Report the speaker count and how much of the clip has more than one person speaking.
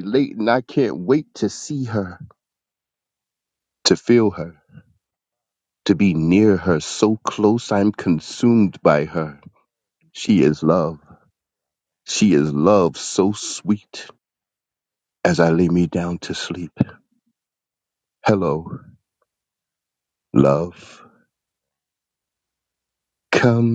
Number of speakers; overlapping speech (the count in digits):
1, no overlap